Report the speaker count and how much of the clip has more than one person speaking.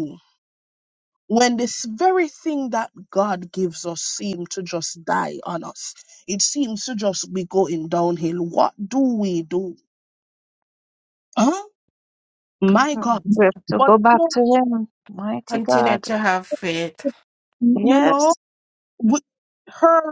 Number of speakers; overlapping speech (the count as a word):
three, about 11%